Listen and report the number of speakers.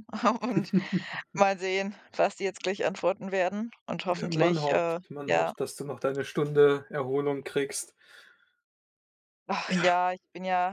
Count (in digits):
2